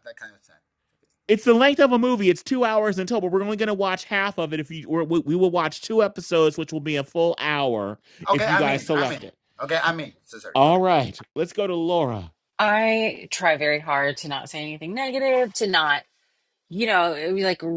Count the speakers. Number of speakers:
3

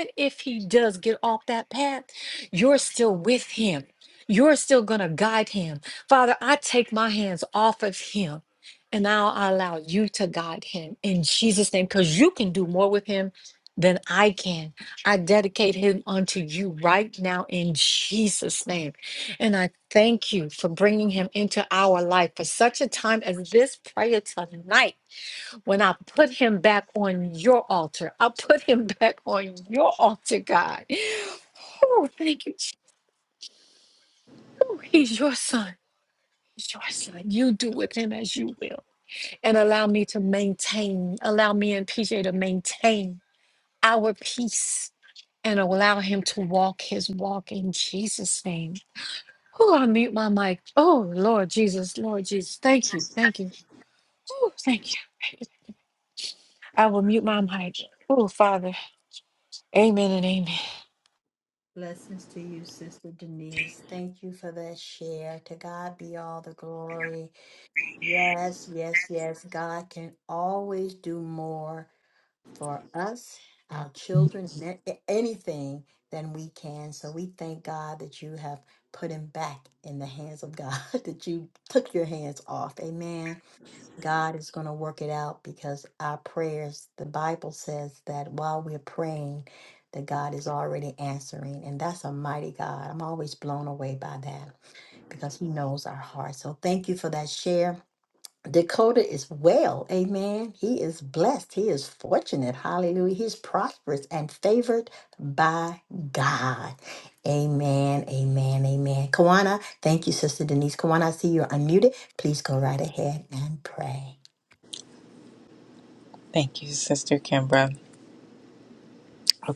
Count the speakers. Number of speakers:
3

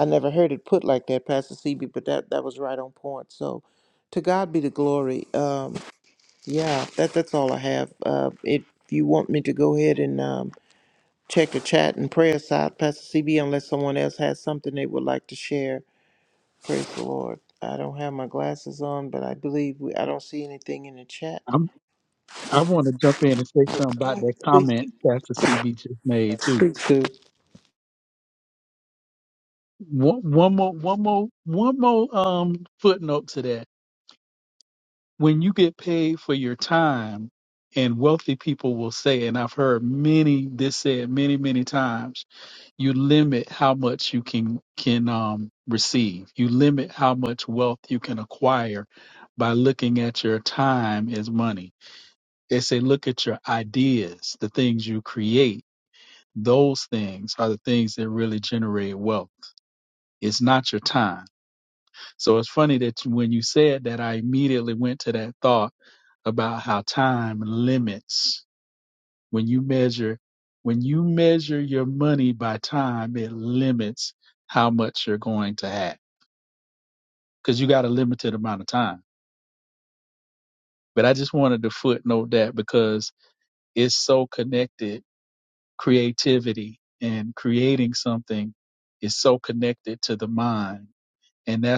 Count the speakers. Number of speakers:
2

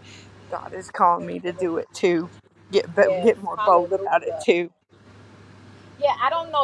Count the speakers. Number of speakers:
2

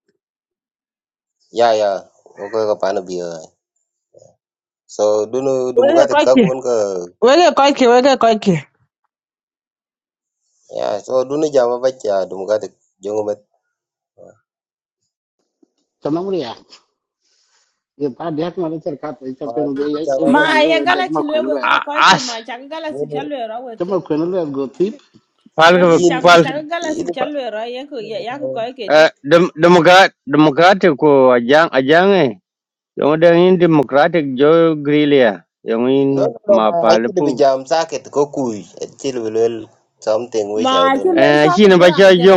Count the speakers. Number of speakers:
5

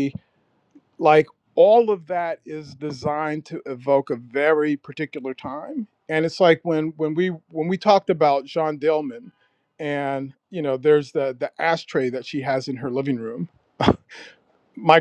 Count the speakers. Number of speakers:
1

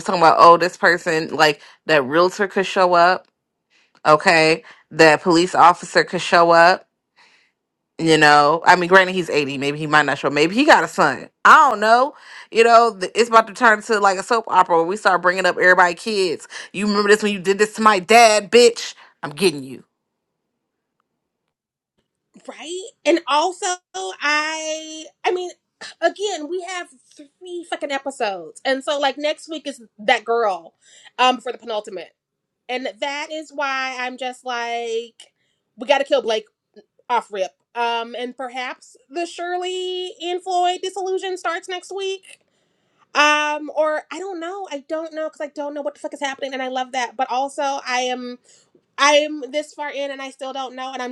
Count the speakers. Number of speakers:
2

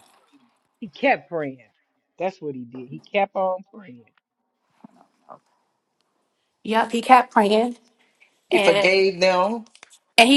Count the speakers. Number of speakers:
3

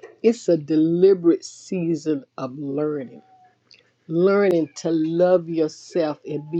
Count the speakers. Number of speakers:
1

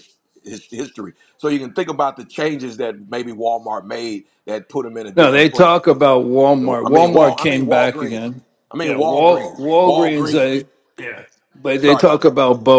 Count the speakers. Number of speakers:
2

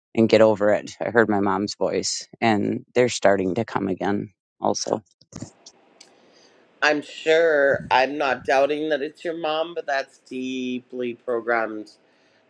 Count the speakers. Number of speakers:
2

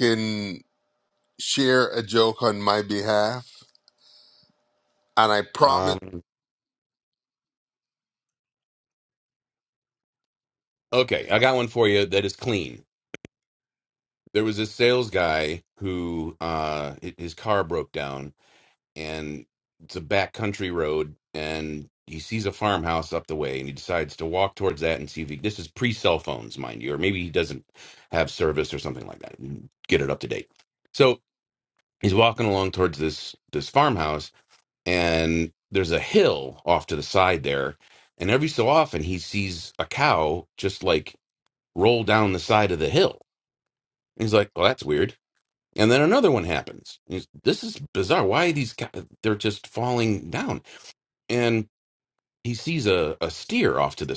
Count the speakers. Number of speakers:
2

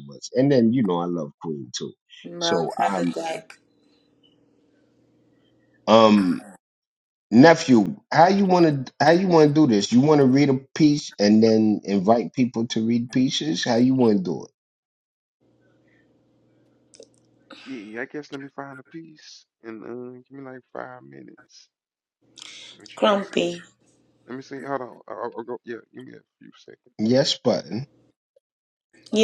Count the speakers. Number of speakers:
3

